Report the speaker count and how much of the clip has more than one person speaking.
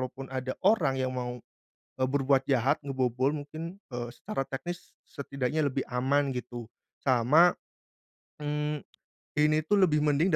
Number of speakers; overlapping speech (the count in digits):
1, no overlap